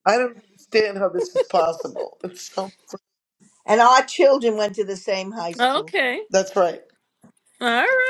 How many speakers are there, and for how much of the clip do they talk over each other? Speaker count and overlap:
3, about 4%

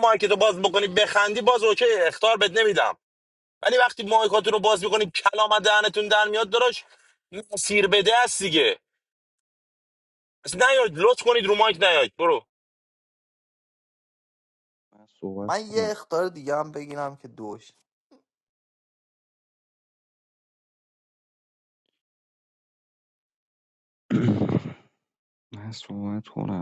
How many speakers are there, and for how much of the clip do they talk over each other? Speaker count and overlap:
3, about 2%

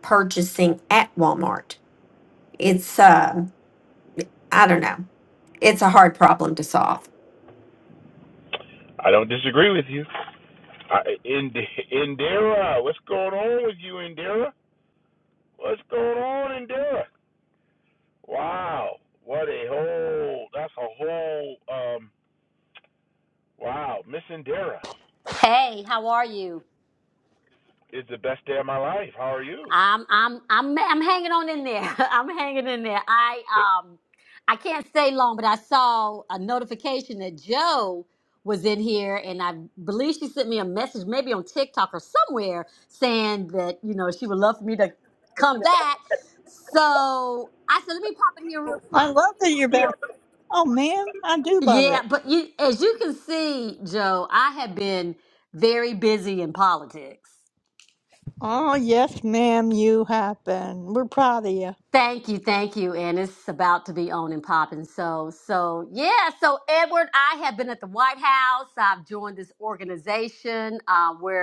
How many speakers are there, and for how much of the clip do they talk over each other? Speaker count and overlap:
4, about 1%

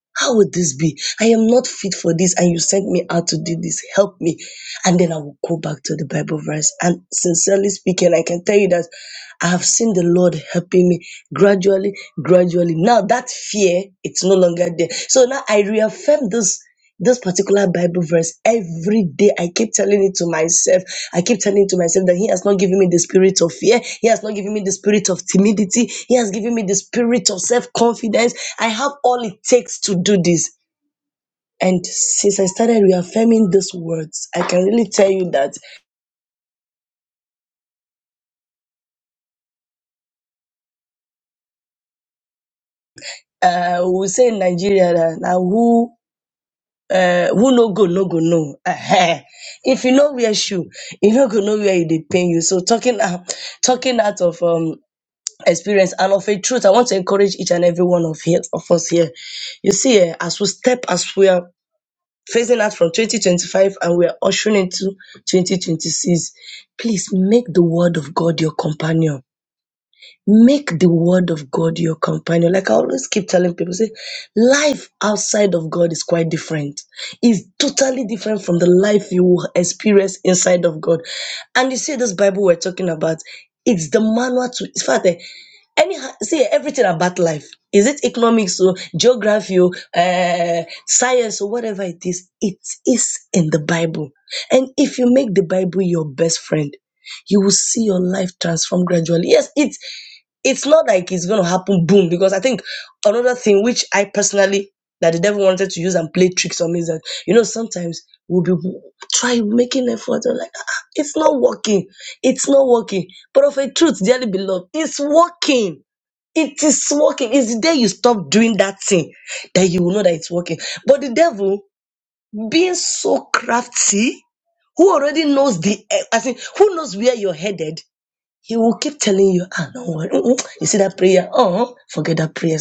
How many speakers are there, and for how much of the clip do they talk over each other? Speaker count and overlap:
1, no overlap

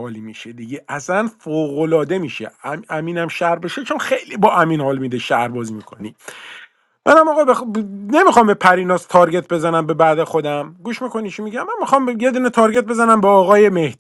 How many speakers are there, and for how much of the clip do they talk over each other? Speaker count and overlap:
1, no overlap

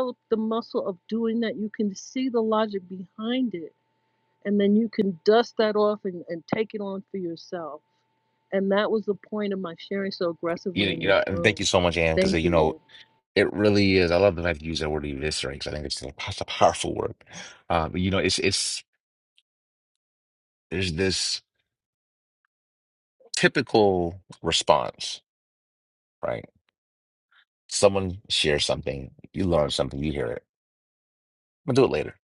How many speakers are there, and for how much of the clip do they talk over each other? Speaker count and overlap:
2, about 4%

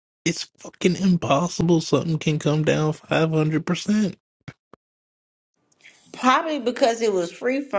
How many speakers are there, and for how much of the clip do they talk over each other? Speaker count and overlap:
2, no overlap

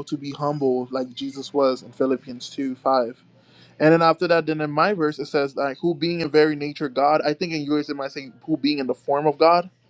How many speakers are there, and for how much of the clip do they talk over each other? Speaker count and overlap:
1, no overlap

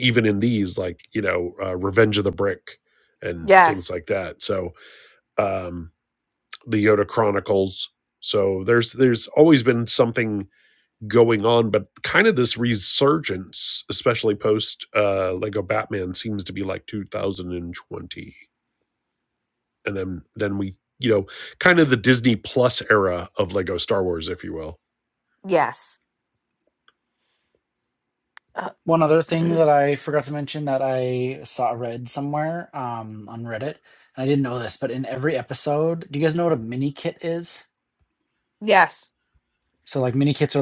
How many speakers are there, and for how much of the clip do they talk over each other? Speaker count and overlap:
3, about 1%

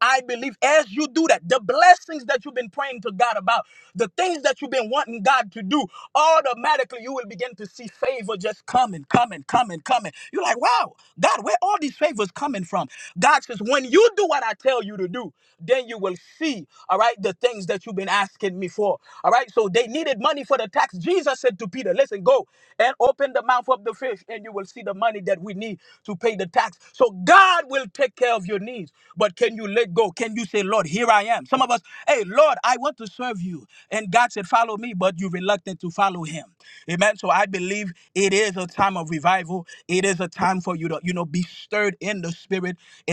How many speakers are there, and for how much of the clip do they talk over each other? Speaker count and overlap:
1, no overlap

